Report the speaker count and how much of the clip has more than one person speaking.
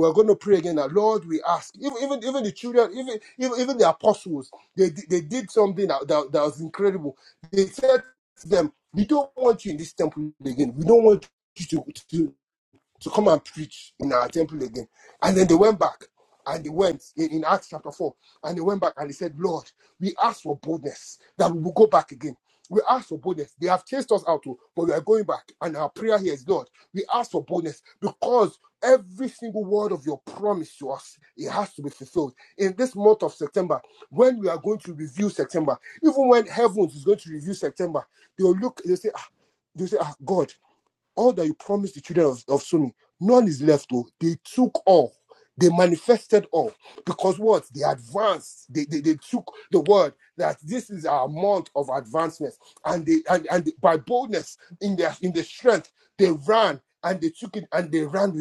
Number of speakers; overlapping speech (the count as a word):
one, no overlap